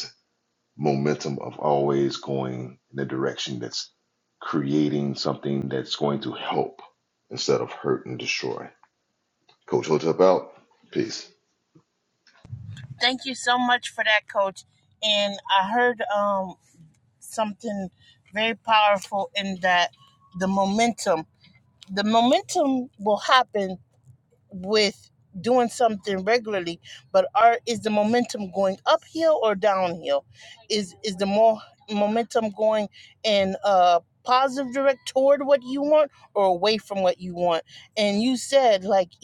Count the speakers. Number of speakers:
two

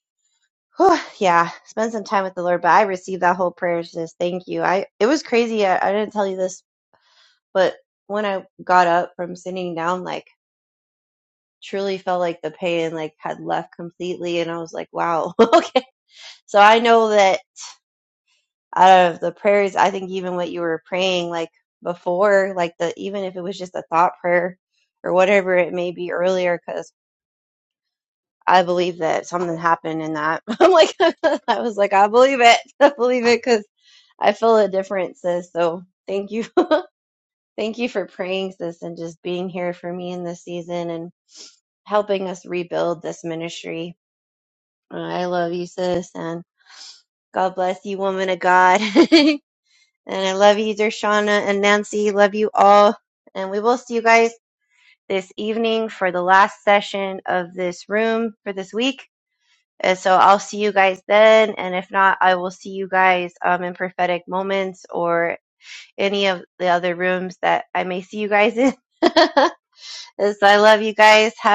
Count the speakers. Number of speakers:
one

